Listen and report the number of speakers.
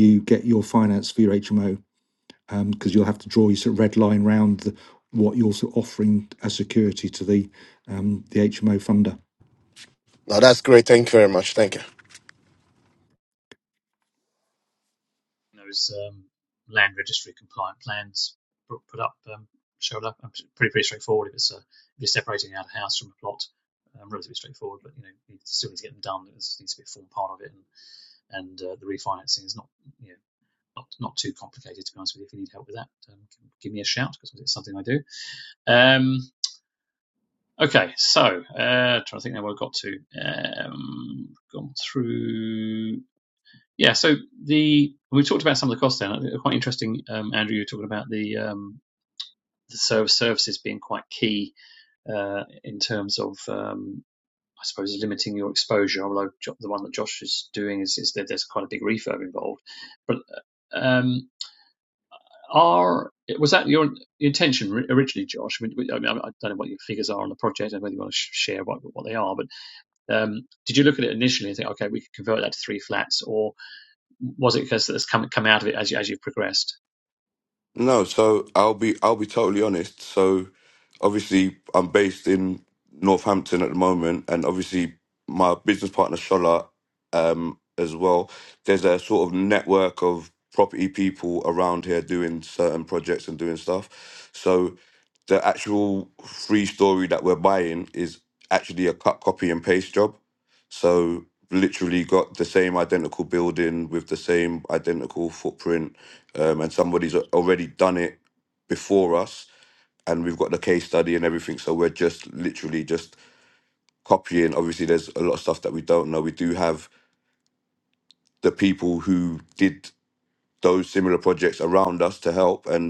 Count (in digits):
4